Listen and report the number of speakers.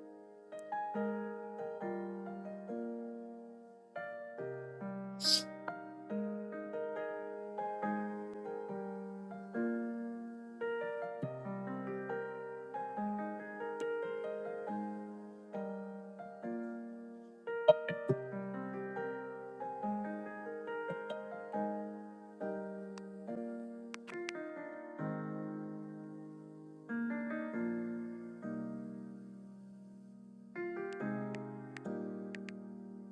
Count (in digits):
0